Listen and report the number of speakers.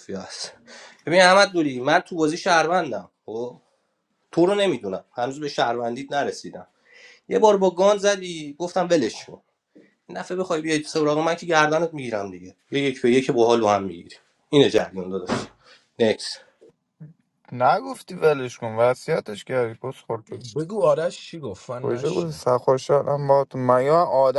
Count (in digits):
3